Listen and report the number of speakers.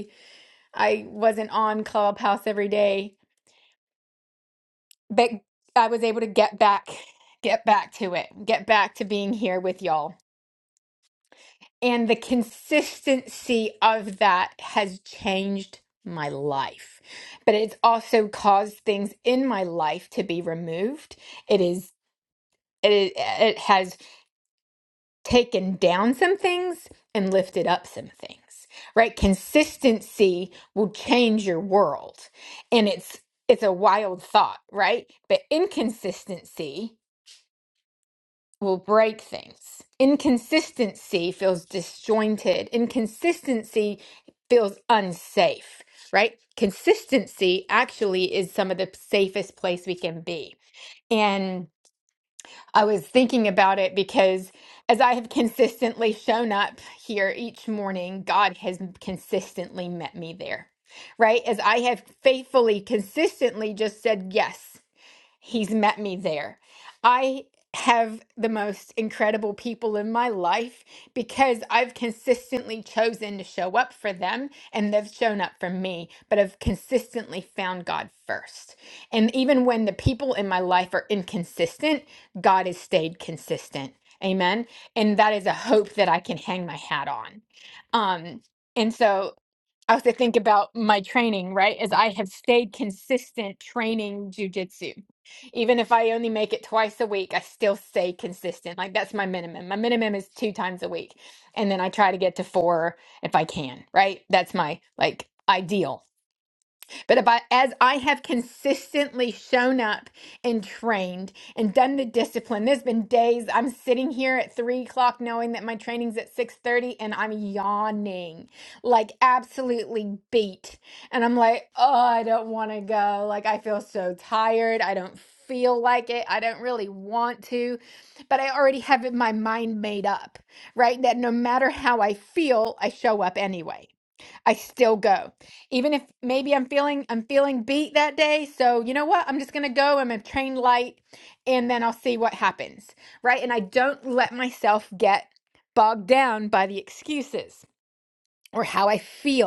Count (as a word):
one